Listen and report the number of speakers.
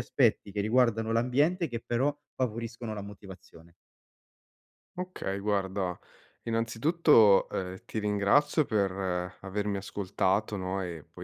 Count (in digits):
2